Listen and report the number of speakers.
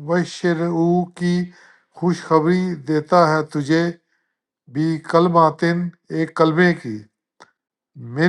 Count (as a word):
one